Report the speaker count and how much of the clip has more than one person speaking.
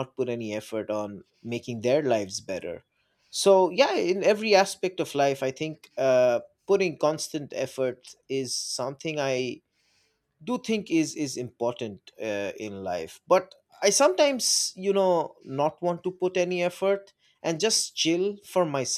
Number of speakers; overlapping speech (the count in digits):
1, no overlap